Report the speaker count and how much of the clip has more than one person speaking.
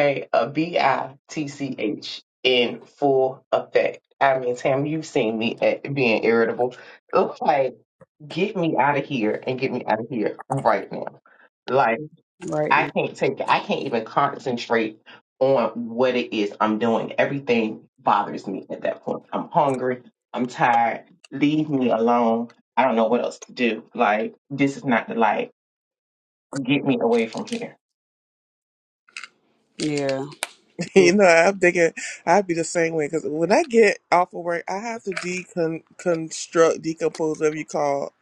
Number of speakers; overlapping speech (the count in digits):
3, about 1%